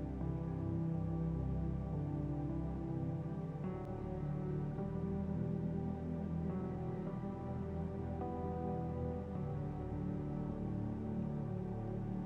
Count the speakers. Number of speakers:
0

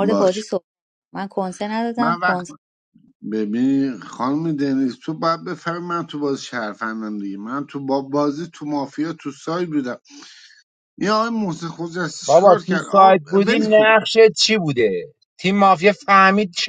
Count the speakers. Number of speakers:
3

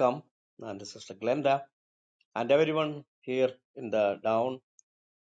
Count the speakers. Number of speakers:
1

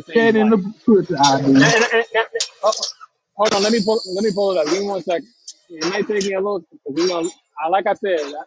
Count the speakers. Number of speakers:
2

